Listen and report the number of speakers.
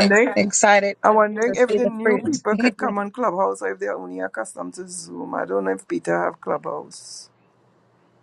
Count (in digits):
2